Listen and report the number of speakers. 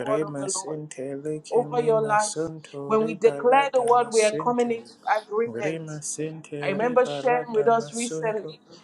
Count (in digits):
2